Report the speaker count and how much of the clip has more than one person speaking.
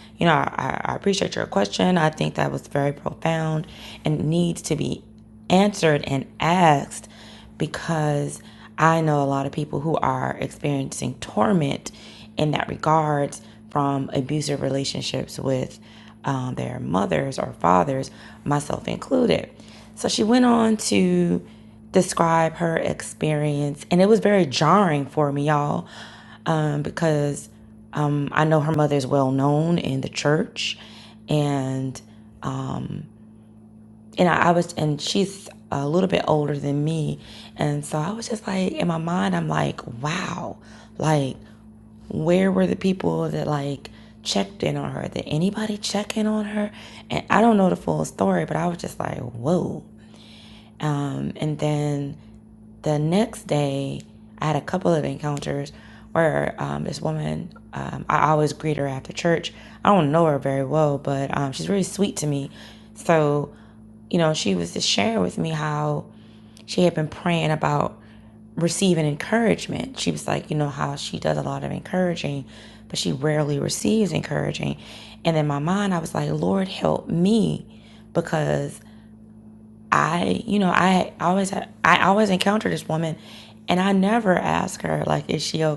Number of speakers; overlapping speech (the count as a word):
one, no overlap